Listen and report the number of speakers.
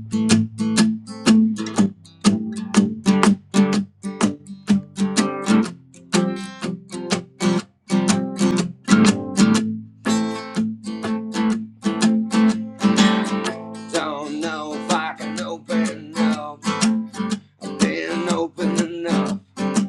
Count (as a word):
one